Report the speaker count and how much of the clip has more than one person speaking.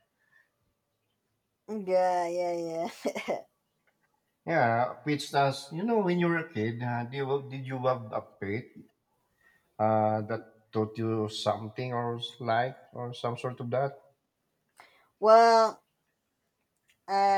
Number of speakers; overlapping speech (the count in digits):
2, no overlap